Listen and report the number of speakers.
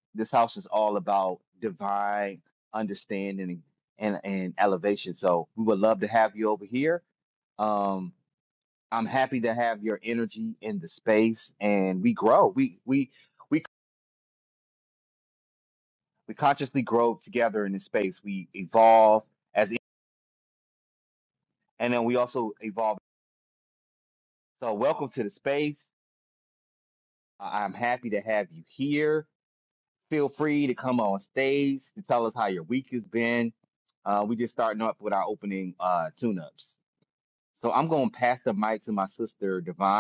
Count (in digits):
1